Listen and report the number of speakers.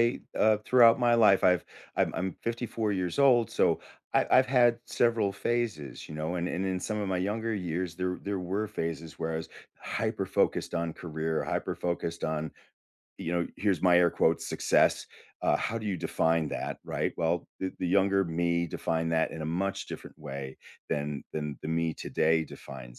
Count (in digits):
1